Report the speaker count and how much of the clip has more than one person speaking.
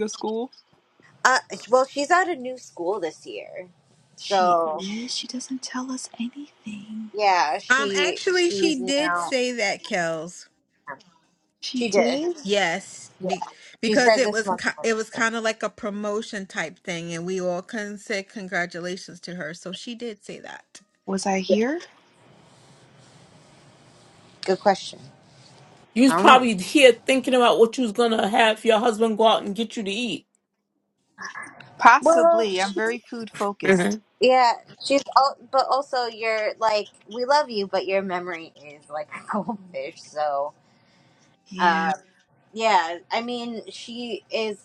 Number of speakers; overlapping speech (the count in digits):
4, about 12%